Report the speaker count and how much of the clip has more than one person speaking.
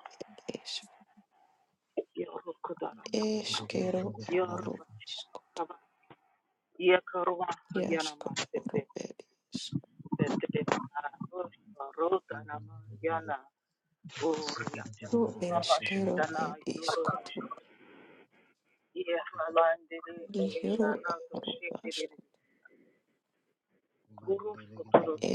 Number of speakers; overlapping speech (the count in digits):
2, about 20%